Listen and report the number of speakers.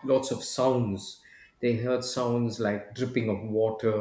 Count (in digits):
1